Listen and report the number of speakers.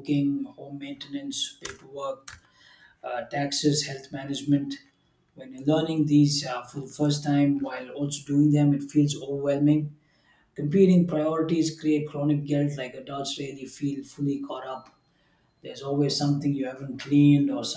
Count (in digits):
1